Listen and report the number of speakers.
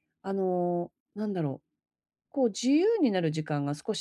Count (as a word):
one